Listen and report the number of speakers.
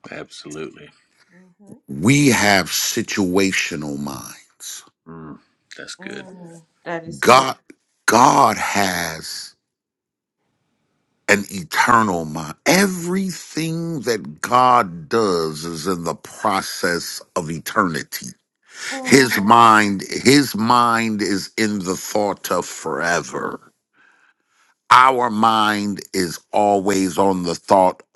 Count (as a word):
three